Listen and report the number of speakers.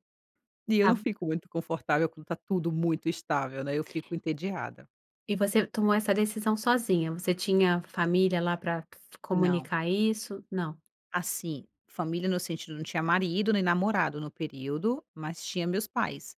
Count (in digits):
2